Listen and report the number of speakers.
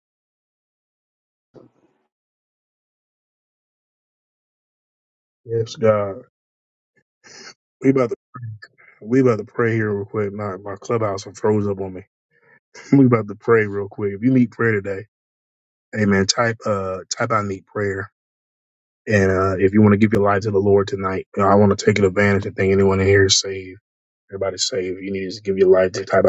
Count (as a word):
one